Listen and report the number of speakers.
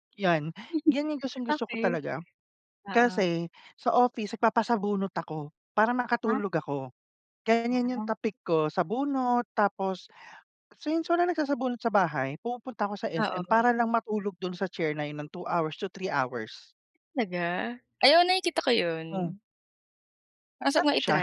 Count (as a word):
two